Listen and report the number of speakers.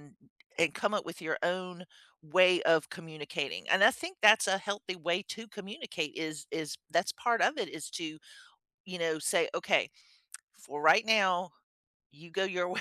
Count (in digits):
1